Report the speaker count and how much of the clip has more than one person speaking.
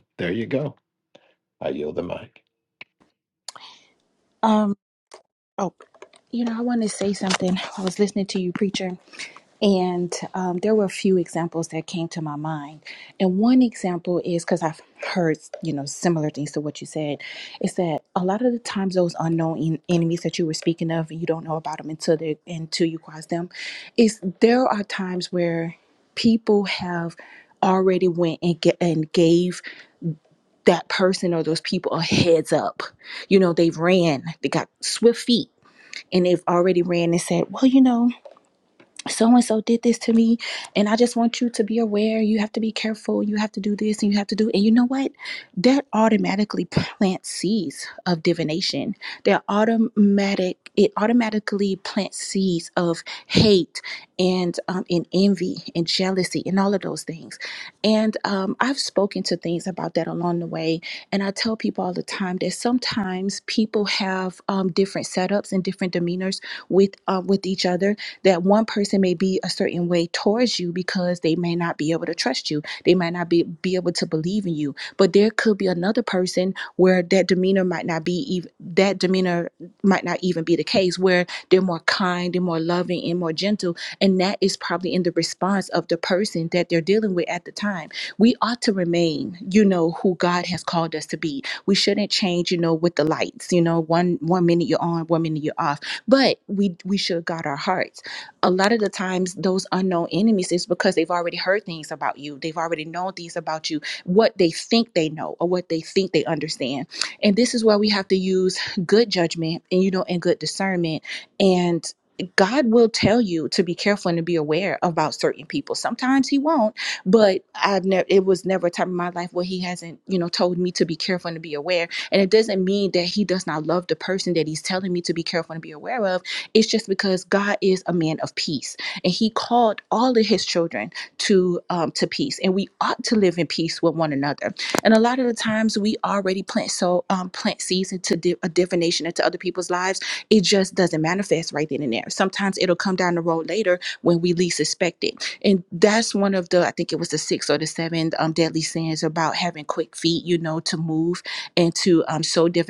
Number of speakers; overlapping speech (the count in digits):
2, no overlap